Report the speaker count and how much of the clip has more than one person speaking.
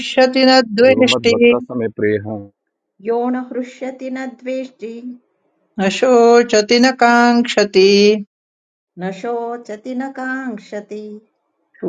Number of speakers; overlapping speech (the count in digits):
3, about 6%